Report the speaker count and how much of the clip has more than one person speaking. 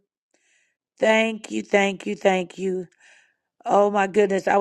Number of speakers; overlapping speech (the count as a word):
one, no overlap